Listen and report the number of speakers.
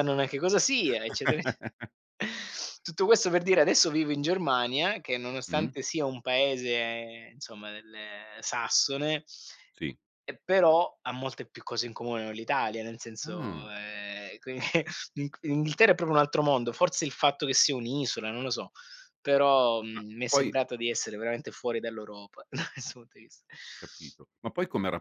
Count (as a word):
two